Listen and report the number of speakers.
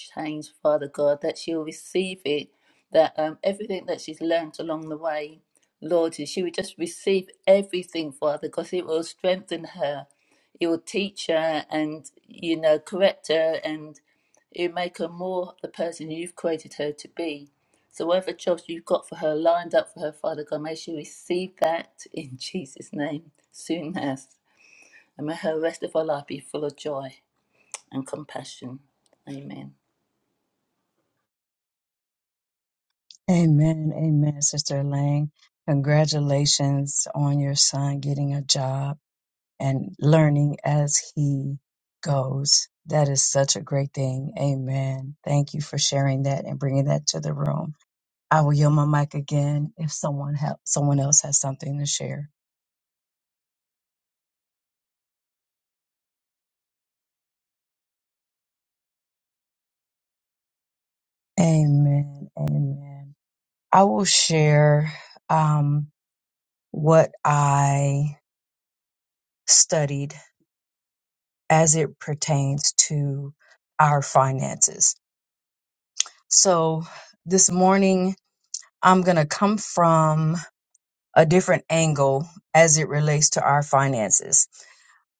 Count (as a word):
two